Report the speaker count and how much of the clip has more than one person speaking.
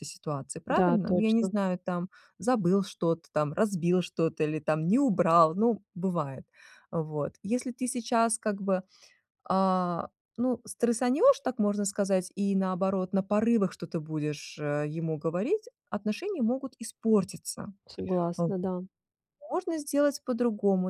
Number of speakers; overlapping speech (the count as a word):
two, about 4%